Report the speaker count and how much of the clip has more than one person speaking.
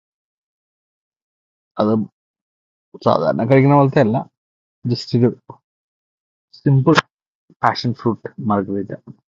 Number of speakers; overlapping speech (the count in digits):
1, no overlap